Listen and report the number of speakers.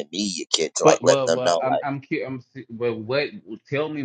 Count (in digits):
2